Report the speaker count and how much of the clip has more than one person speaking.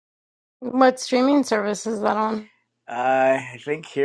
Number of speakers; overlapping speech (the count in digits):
2, no overlap